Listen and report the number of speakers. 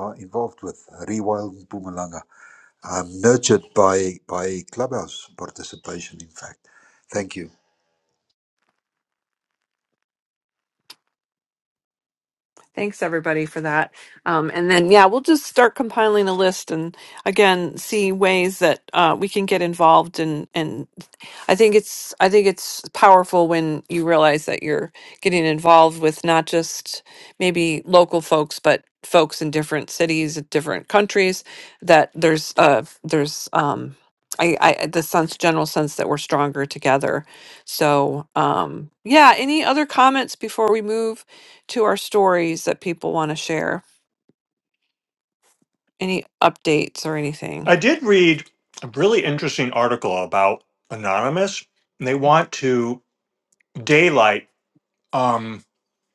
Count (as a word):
three